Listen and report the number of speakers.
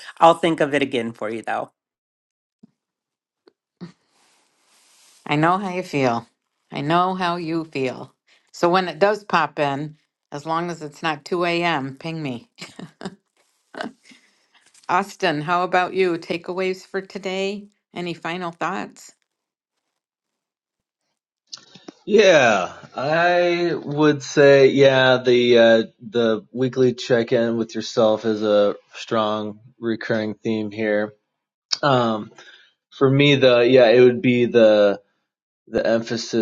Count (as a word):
three